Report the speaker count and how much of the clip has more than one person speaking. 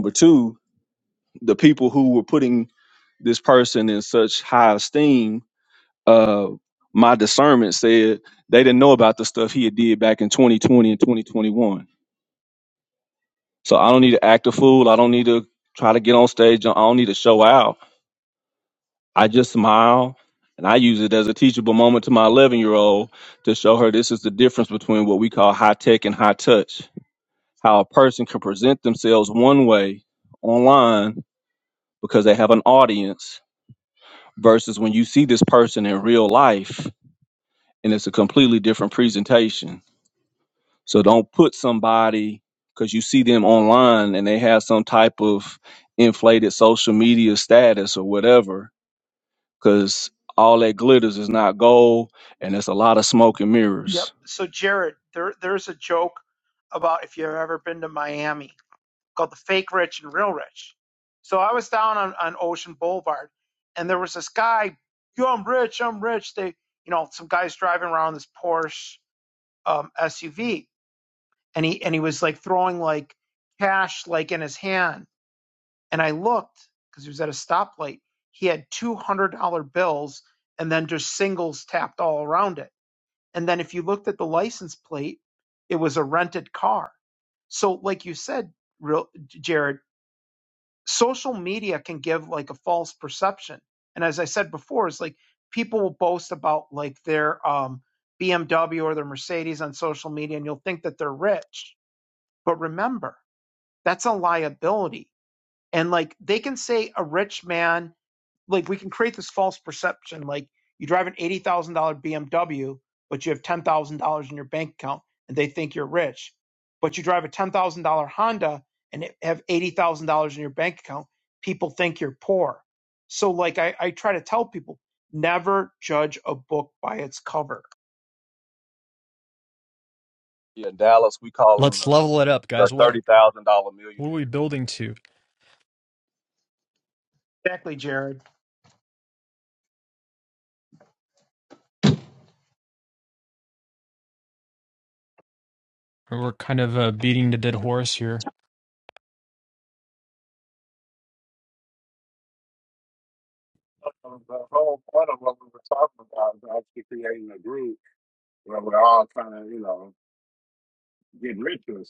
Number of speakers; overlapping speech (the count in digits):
4, about 1%